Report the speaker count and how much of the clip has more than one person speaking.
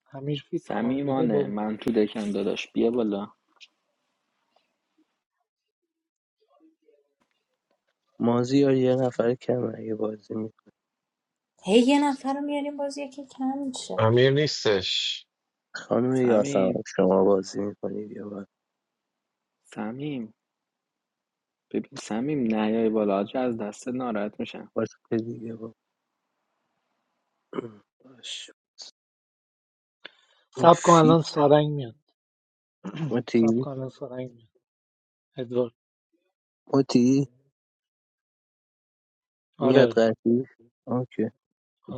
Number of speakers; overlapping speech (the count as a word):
five, about 6%